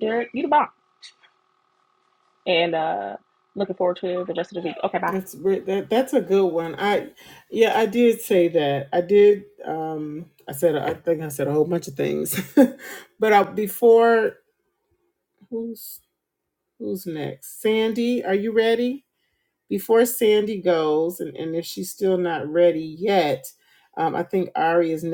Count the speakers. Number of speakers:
2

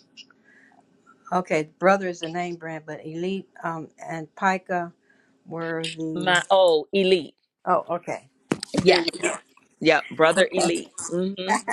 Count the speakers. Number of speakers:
2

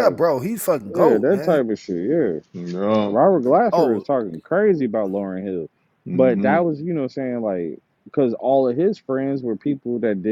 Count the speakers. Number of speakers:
3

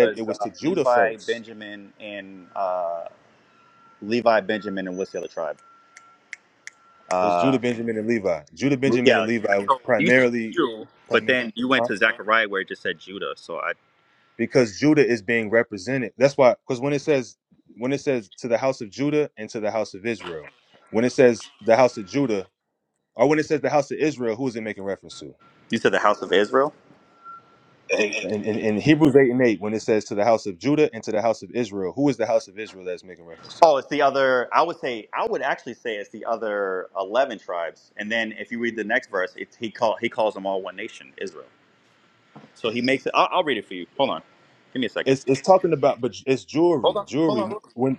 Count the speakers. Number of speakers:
2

